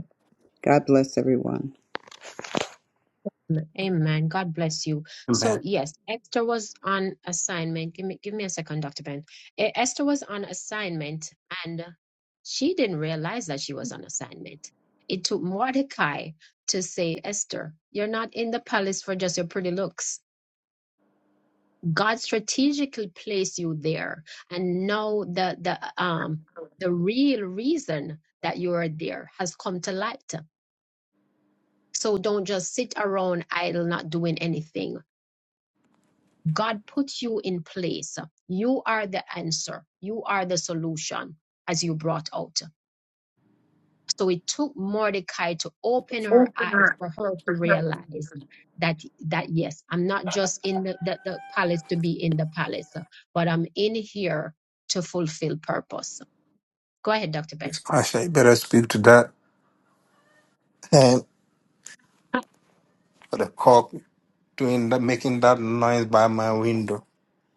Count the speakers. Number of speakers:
3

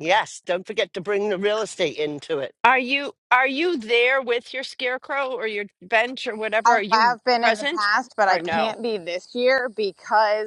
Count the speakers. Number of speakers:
3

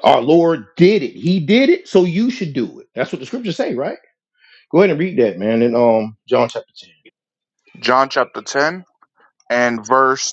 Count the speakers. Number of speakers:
2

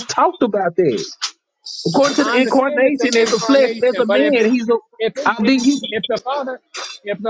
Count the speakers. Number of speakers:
2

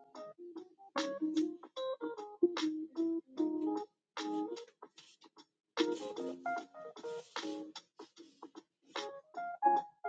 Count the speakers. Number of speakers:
0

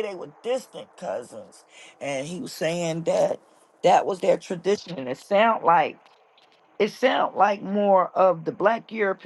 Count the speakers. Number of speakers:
1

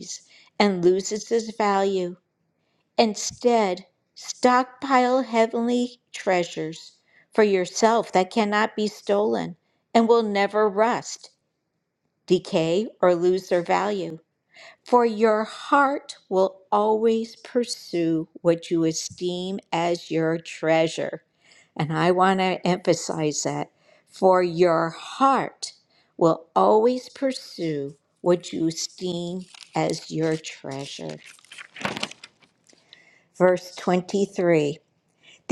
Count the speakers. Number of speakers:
1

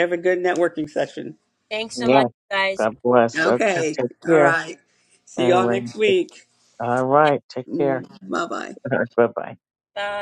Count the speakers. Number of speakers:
3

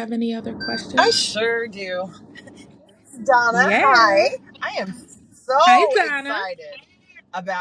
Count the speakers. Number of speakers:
2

